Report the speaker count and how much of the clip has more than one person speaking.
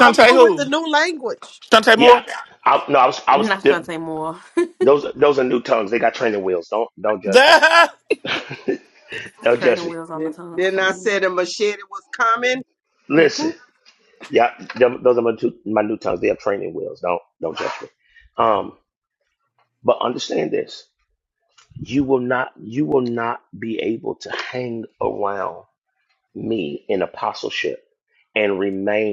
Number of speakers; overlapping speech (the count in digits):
5, about 11%